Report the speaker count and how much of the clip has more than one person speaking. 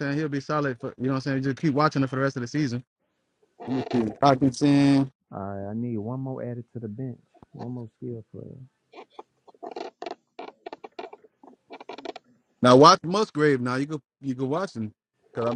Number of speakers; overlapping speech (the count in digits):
2, no overlap